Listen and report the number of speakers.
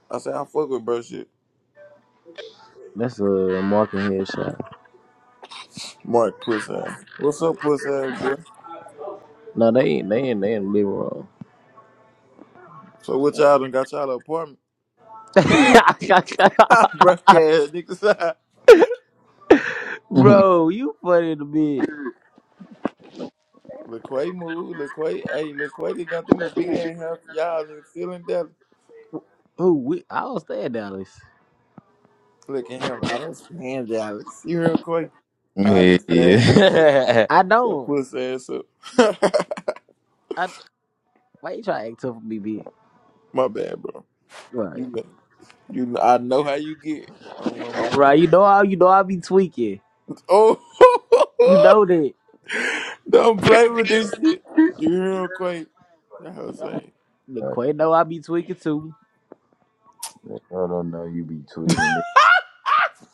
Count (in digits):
3